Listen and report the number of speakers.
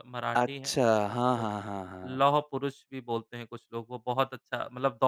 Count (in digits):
2